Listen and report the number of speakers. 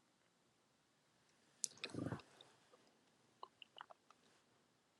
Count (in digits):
0